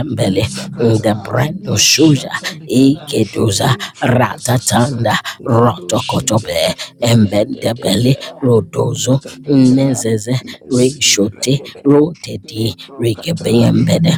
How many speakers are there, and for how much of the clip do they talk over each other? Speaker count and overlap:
two, about 52%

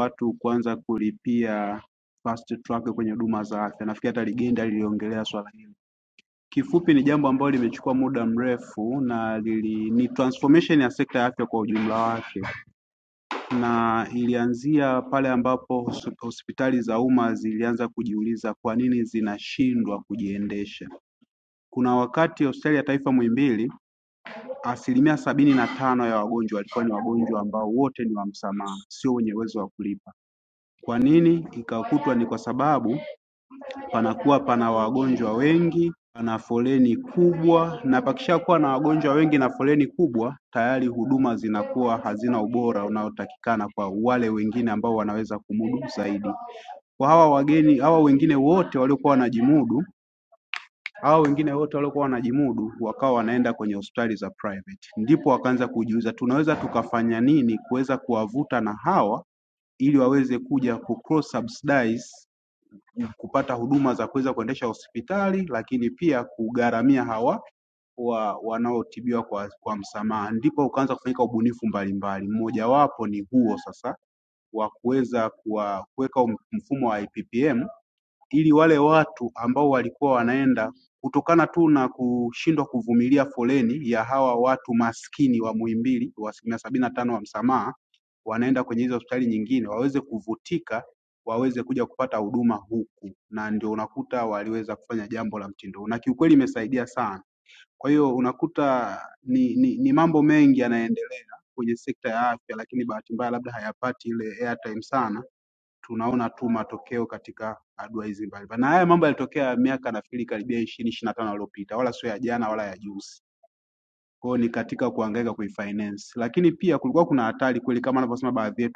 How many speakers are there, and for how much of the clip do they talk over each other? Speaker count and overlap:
one, no overlap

